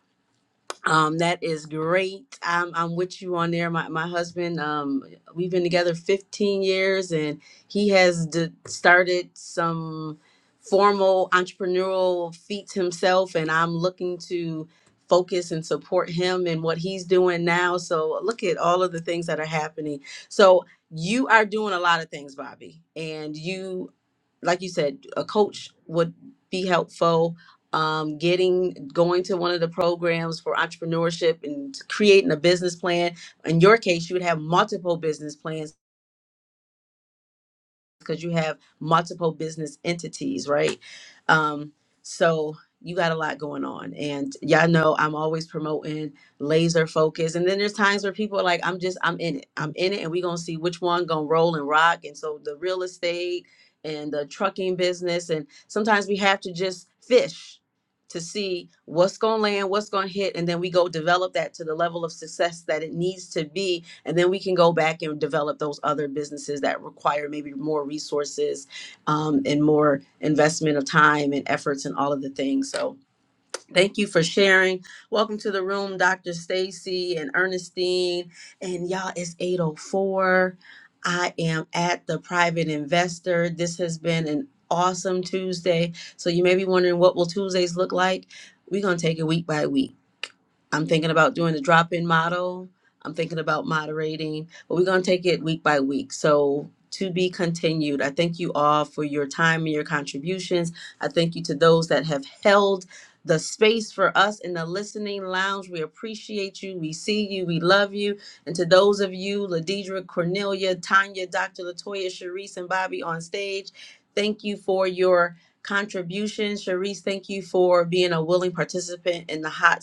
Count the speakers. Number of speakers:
one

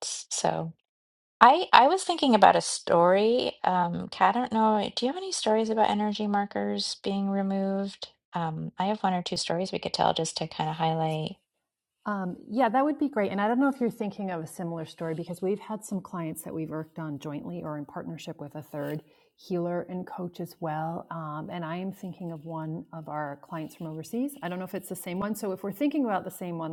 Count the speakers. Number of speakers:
two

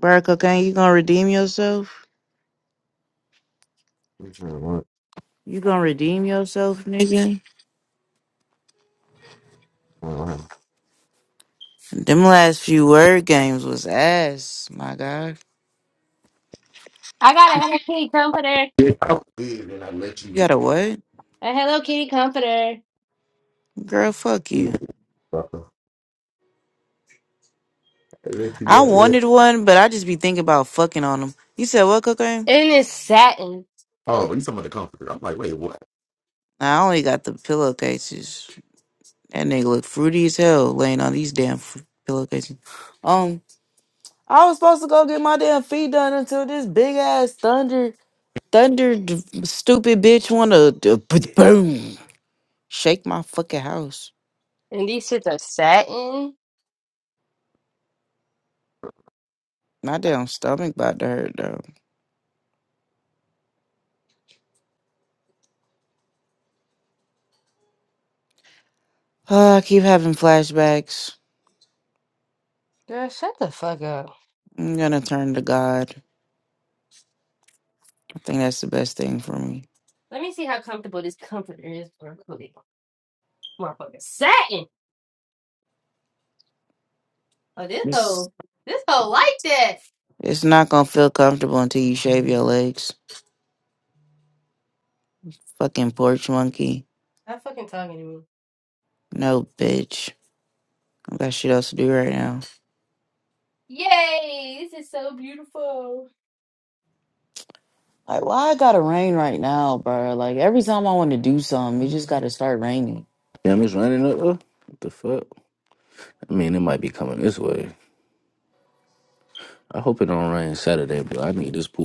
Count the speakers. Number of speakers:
four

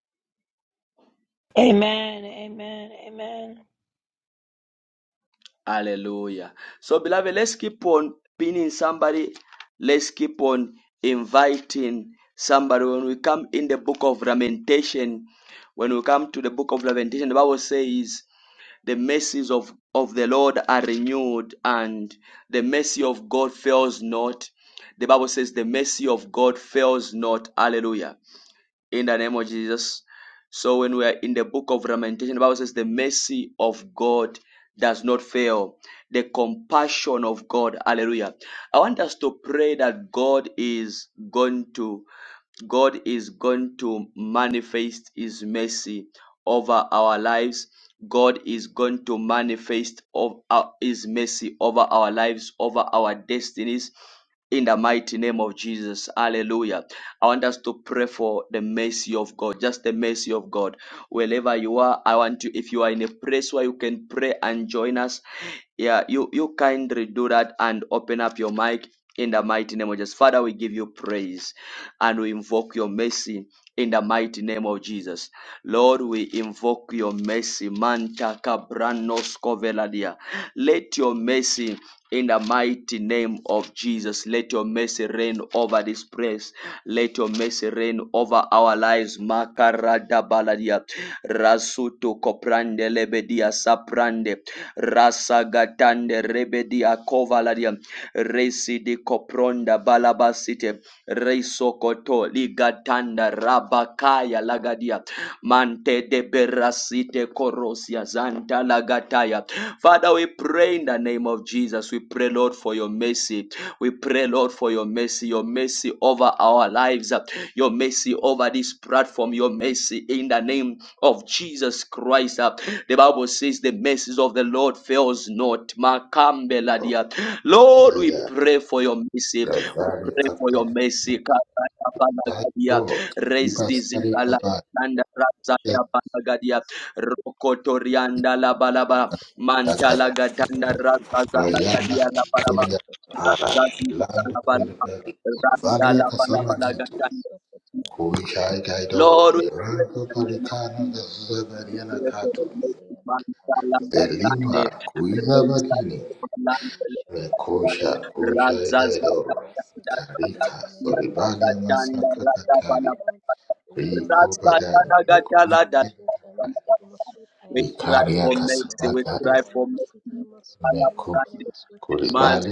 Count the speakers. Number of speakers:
four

